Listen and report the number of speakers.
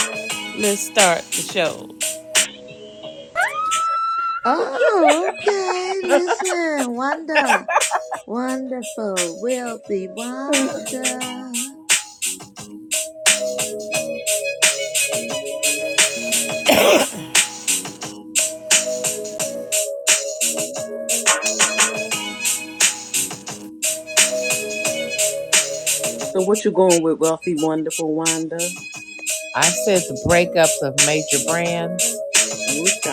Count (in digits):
3